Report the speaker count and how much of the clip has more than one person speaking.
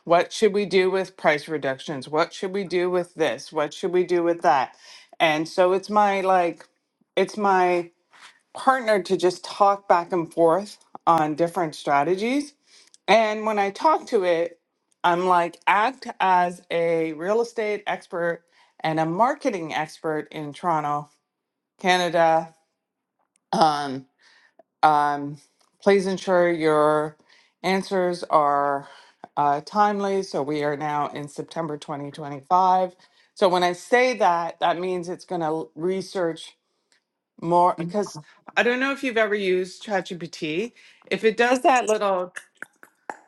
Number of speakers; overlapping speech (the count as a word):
one, no overlap